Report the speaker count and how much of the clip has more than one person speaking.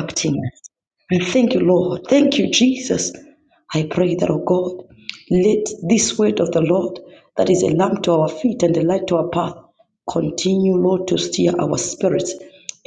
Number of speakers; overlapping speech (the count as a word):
one, no overlap